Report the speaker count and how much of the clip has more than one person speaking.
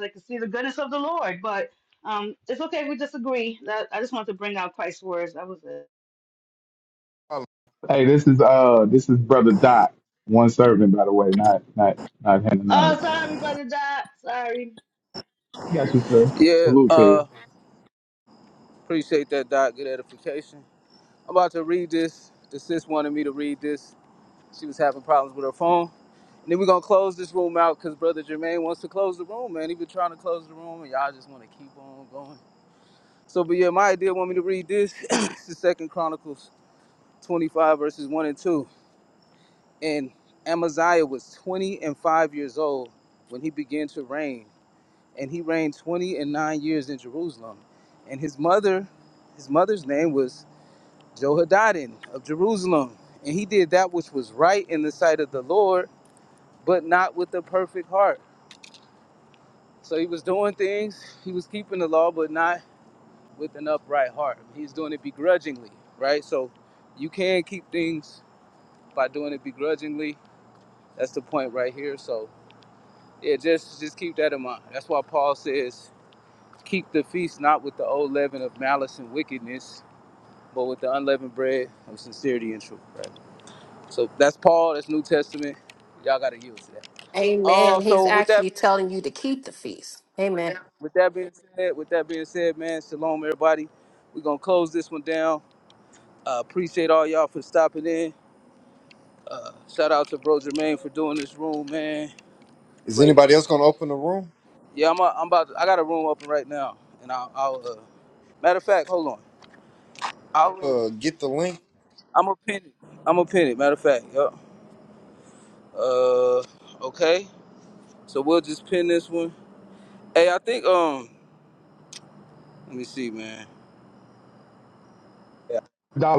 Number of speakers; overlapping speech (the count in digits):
5, about 2%